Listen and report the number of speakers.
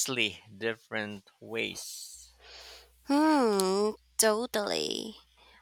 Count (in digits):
2